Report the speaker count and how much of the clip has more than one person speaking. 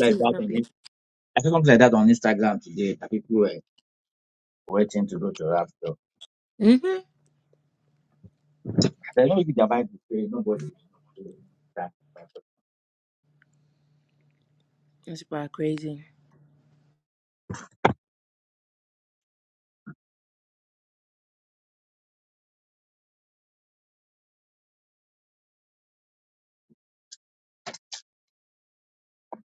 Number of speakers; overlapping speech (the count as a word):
two, about 2%